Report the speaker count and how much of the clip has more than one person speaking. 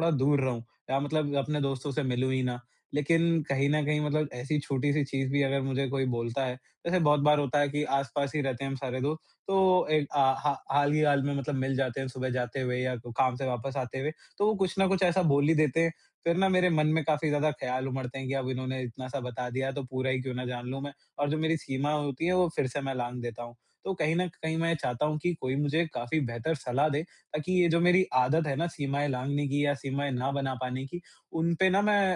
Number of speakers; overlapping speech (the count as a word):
one, no overlap